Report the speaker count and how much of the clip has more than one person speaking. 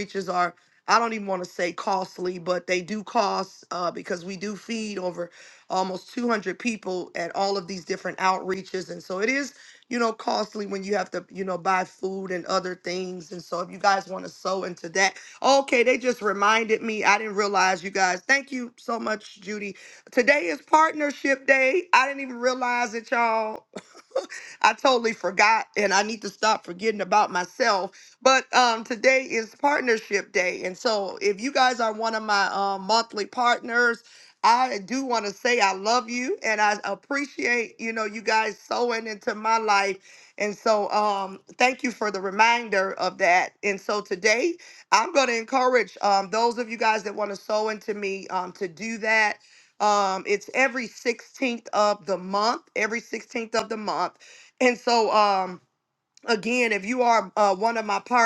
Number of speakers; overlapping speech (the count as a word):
one, no overlap